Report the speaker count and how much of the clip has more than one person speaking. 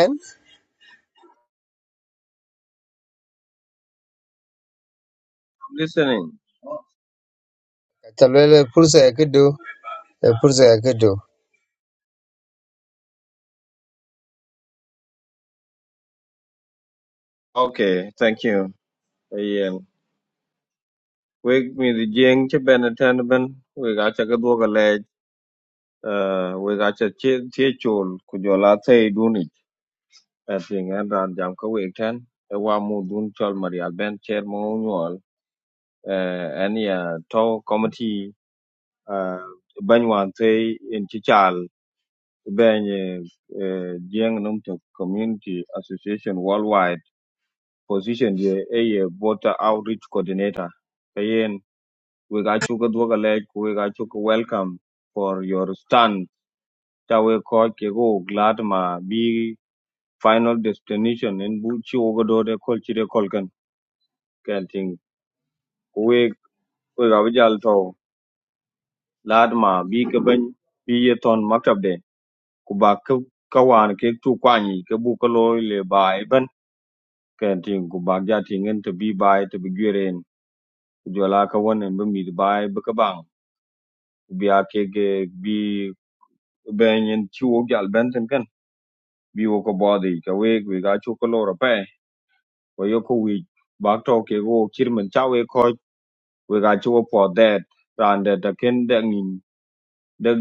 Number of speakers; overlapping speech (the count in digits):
2, no overlap